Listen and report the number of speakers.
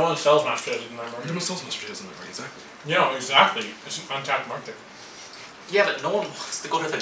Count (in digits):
3